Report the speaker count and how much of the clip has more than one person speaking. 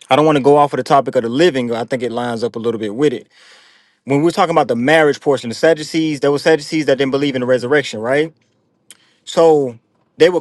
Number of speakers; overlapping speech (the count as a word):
one, no overlap